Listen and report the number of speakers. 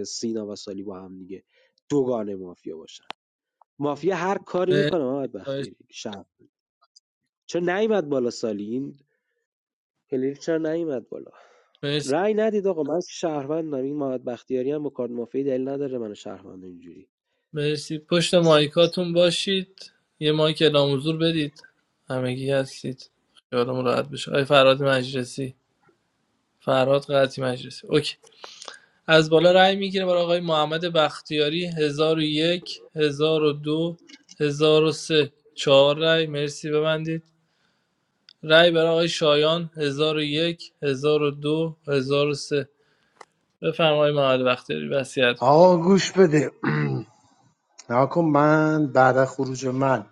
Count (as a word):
three